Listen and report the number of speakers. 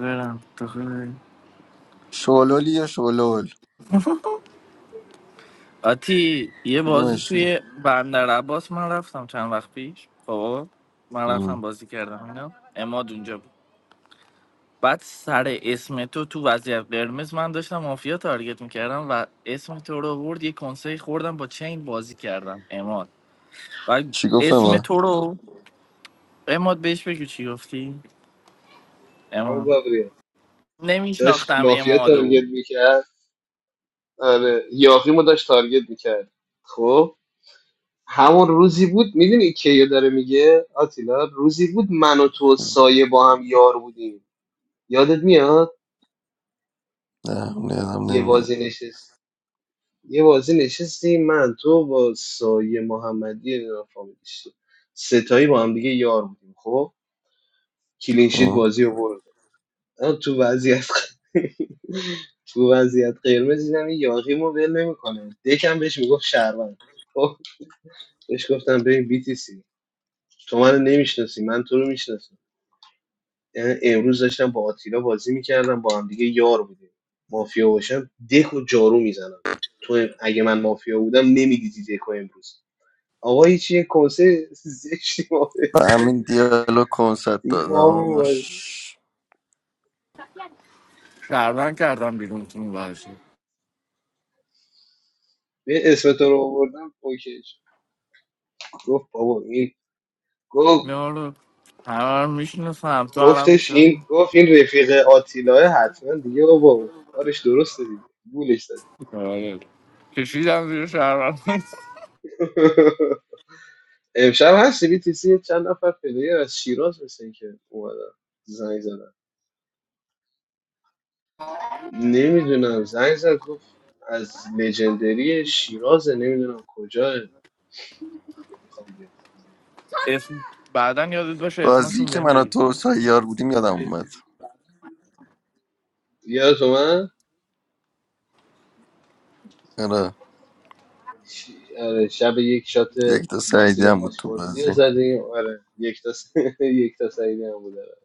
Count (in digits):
3